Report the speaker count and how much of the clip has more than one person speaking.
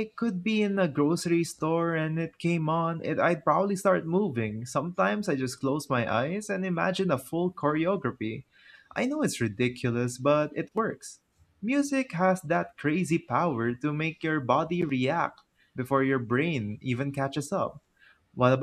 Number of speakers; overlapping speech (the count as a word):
one, no overlap